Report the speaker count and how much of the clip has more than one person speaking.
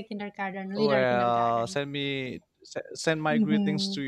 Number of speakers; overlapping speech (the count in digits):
2, about 41%